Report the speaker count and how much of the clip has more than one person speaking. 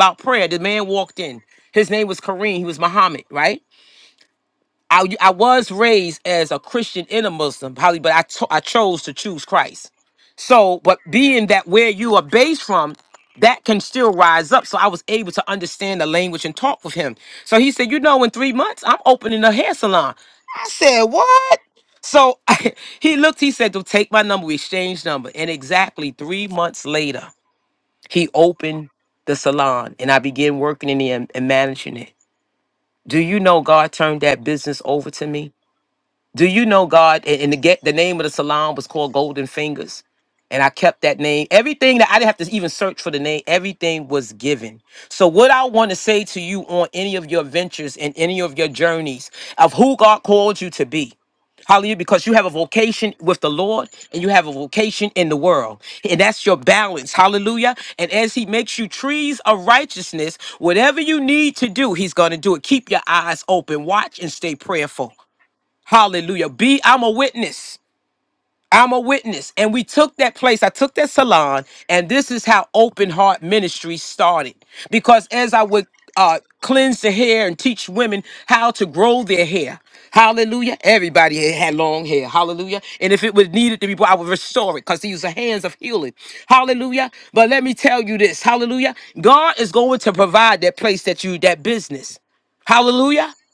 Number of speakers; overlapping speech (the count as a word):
one, no overlap